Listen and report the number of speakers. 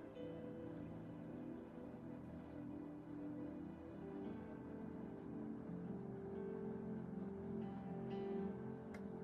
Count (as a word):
zero